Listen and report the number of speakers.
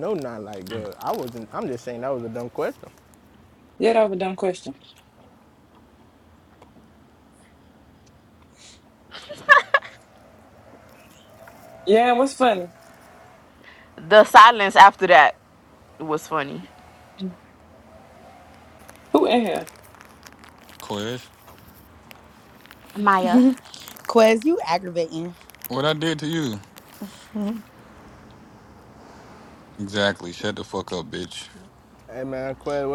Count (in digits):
5